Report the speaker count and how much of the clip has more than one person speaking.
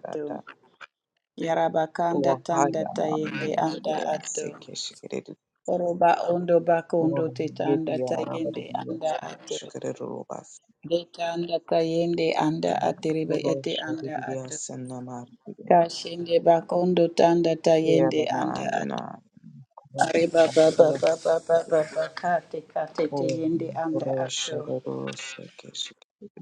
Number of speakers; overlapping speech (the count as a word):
two, about 30%